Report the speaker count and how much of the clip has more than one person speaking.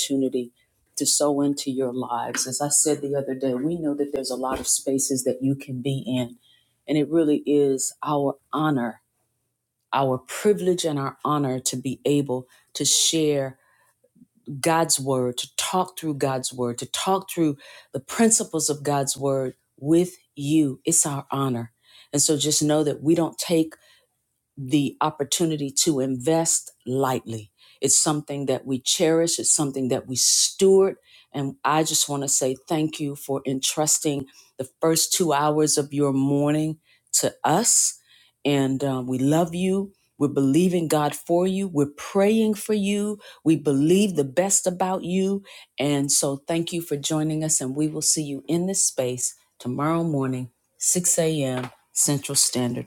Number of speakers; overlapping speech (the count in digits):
1, no overlap